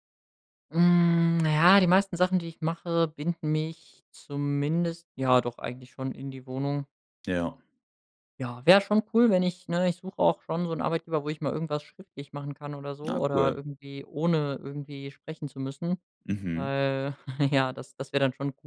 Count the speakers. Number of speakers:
two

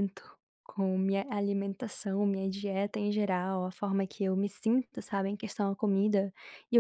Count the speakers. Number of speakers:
one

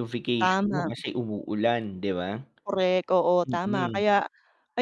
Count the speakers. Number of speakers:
two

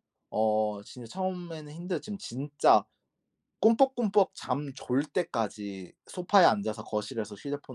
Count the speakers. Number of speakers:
one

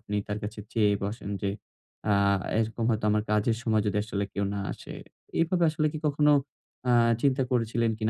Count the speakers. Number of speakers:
one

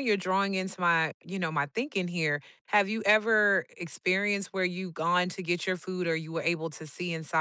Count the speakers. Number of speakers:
one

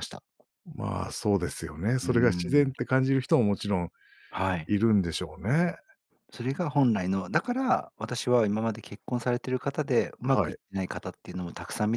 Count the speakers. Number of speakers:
two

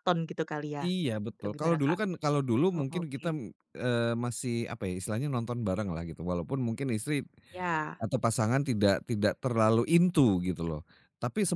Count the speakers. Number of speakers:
two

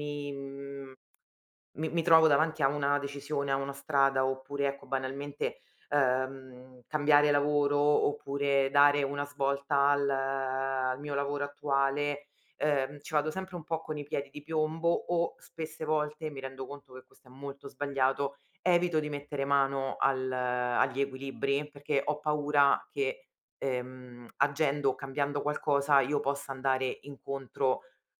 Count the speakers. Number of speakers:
one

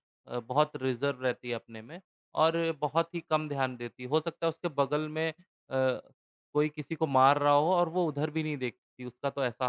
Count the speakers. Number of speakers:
one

